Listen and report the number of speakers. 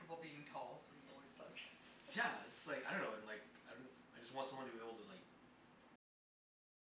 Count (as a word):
two